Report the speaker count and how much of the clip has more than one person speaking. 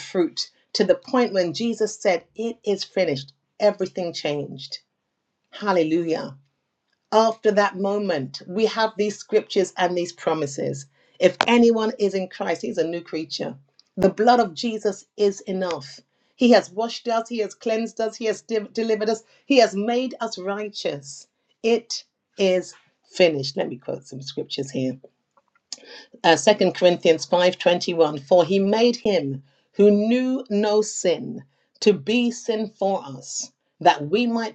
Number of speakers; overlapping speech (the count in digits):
1, no overlap